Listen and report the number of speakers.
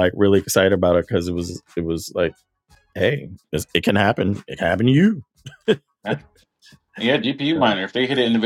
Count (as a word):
two